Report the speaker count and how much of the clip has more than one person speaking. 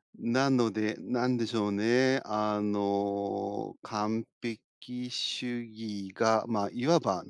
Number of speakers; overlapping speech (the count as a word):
one, no overlap